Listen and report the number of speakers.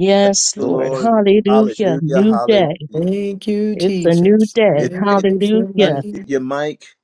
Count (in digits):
3